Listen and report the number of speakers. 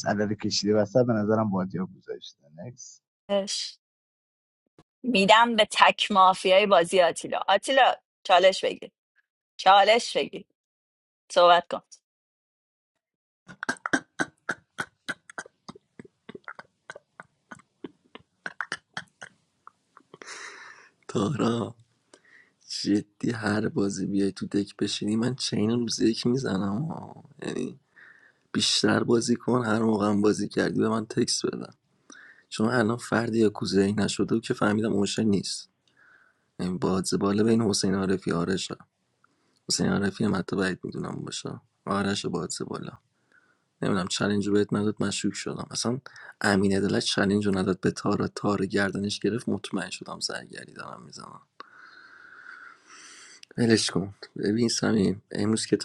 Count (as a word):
three